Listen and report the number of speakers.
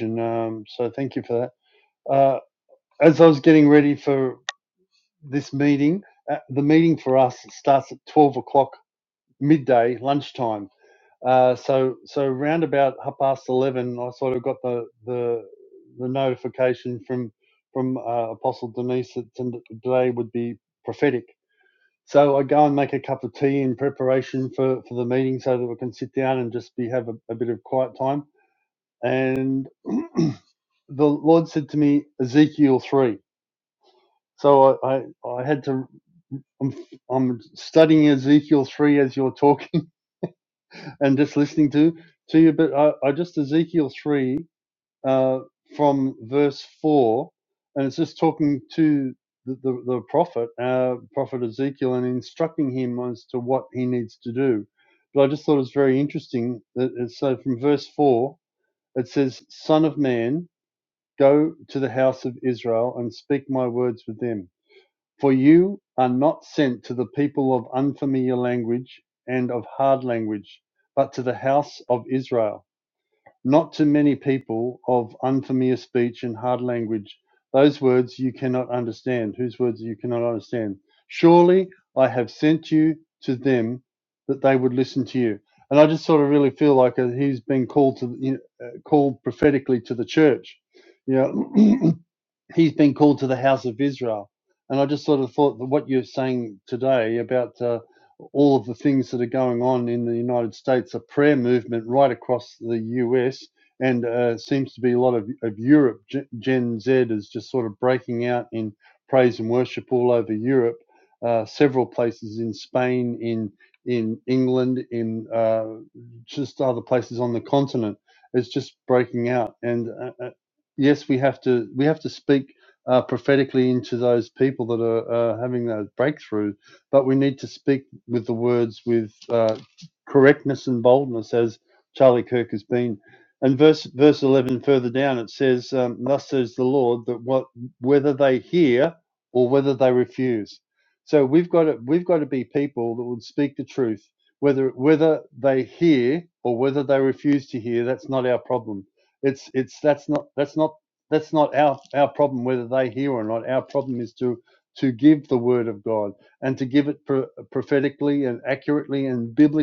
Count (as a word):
one